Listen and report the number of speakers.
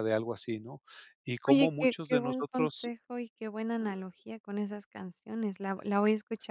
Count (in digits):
2